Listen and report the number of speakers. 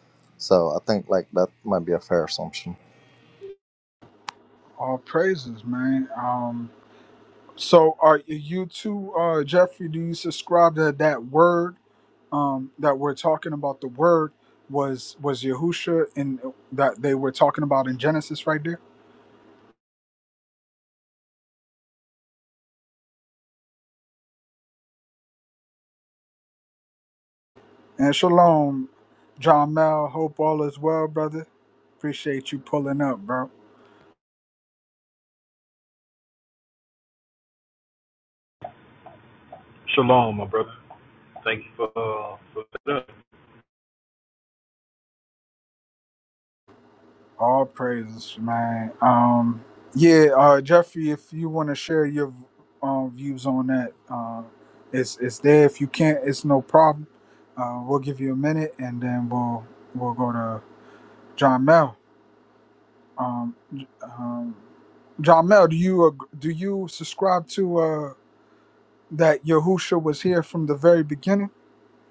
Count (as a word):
three